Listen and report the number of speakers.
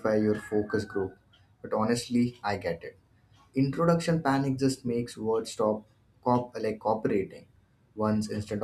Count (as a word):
one